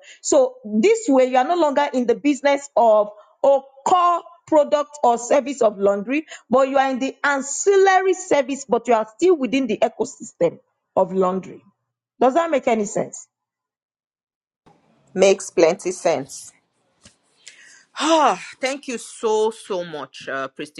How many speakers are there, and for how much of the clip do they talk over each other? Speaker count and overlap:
2, no overlap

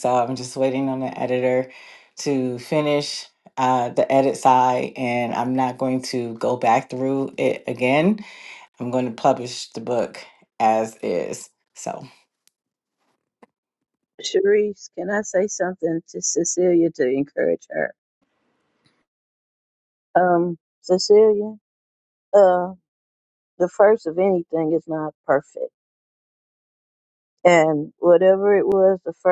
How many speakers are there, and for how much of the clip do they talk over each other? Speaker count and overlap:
2, no overlap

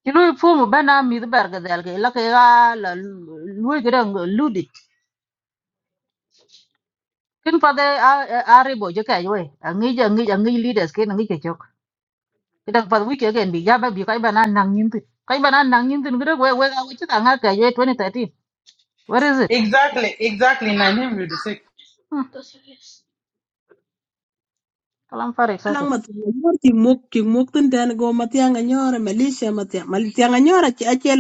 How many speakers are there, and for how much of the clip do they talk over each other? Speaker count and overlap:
3, about 1%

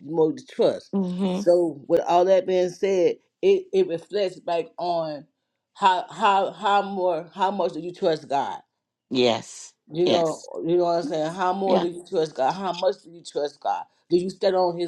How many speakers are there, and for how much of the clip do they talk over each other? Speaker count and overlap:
2, about 3%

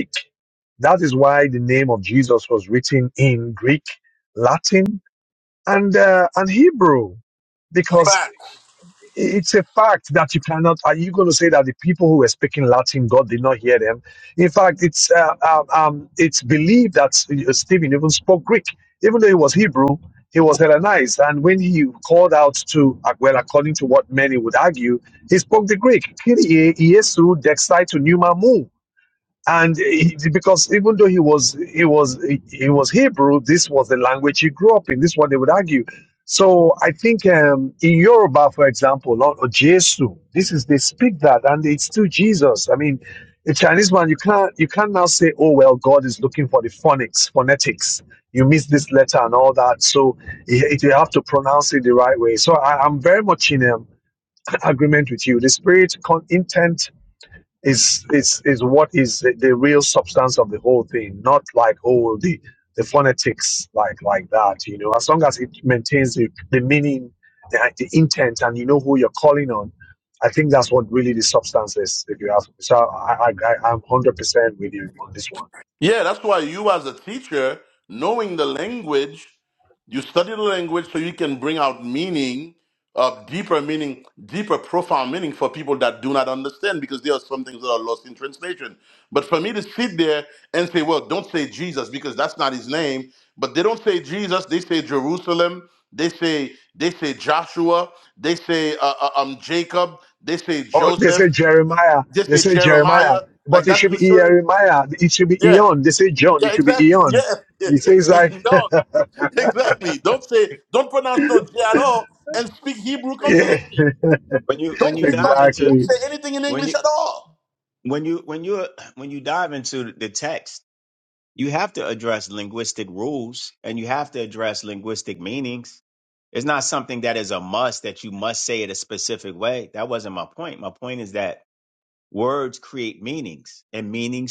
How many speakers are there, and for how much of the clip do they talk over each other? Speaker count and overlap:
3, about 4%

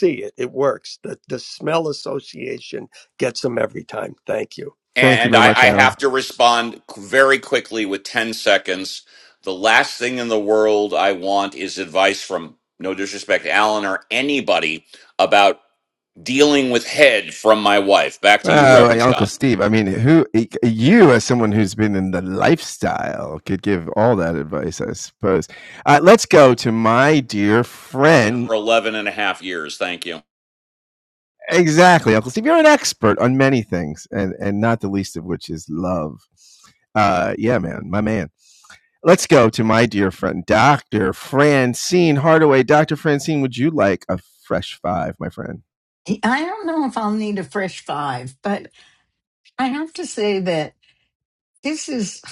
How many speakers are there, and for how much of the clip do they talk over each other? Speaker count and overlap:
4, about 3%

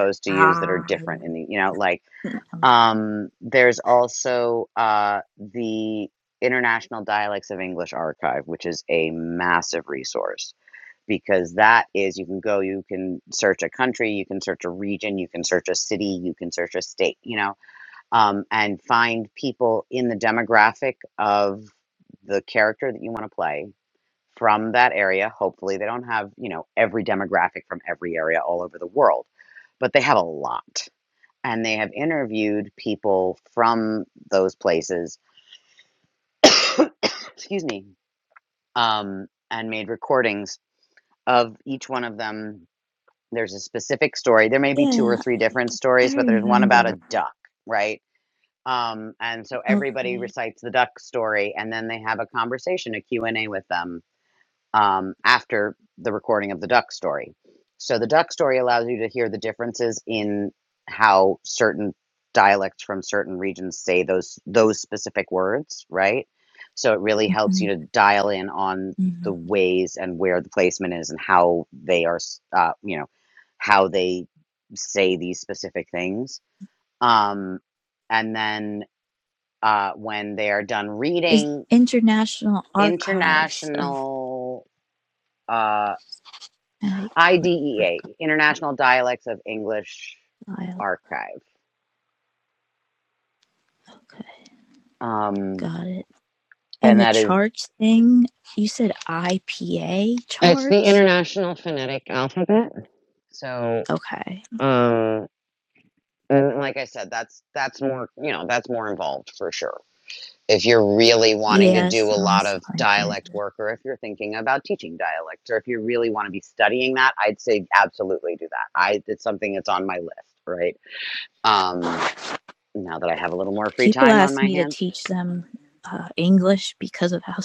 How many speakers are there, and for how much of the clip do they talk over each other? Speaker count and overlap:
2, about 7%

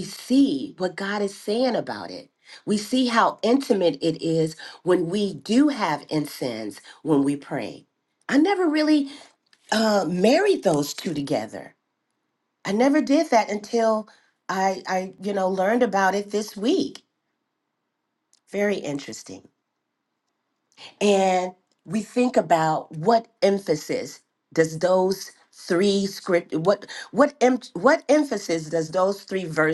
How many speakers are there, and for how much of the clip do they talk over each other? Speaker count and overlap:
1, no overlap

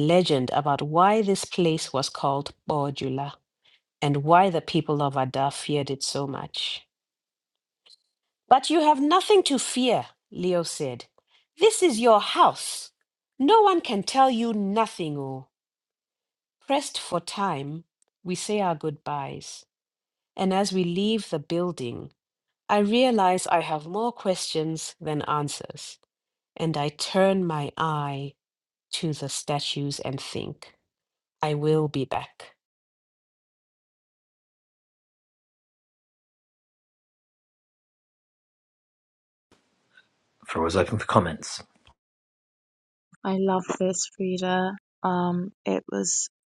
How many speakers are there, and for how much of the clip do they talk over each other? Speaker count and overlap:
3, no overlap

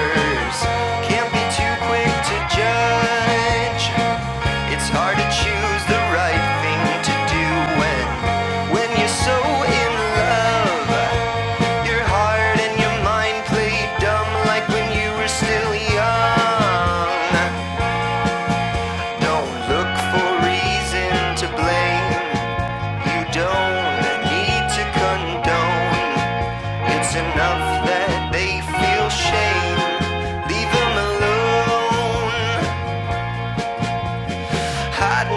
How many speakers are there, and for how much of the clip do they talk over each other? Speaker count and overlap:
1, no overlap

